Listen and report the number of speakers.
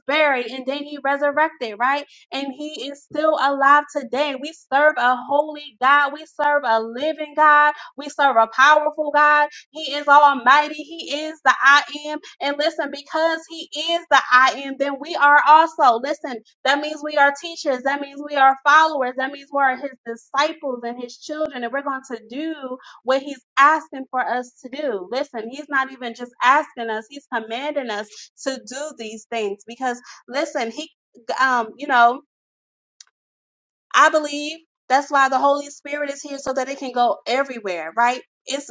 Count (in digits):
1